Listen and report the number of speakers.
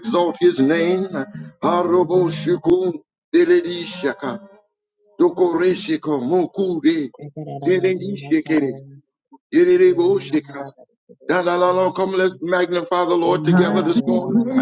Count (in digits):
2